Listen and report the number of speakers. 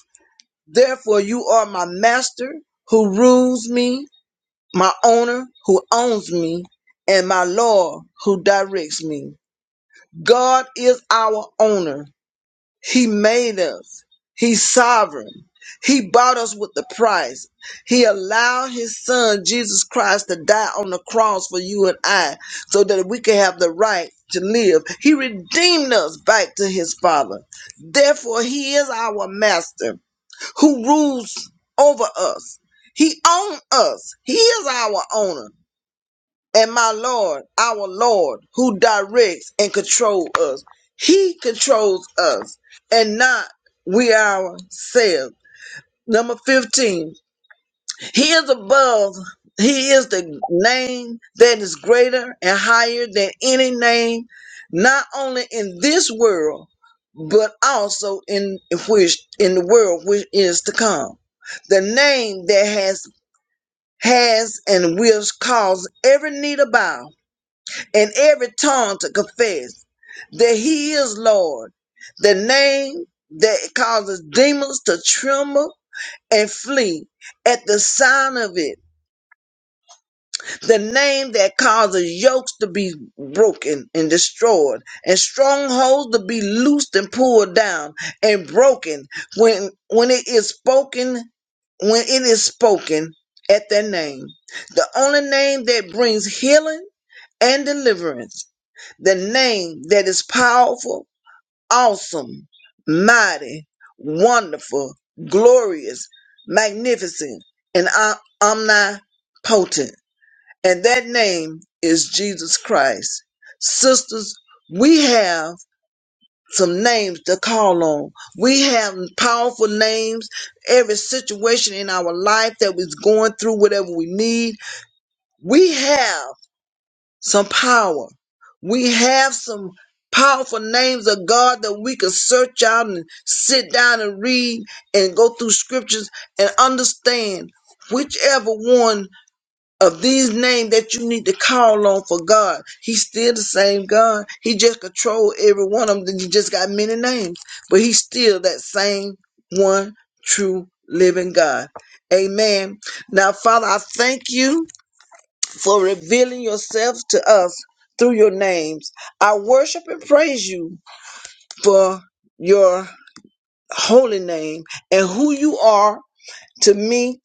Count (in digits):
1